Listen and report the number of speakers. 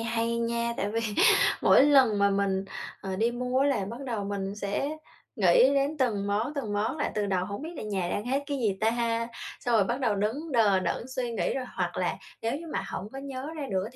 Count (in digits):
1